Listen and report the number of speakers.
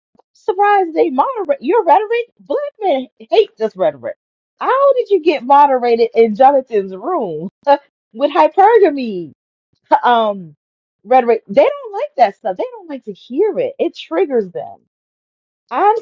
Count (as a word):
one